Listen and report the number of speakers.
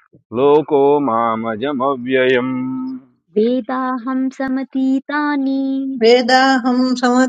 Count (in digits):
3